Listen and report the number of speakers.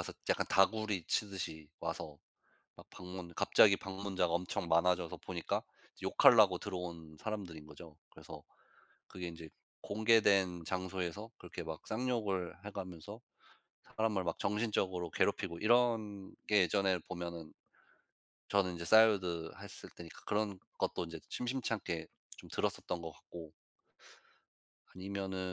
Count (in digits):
1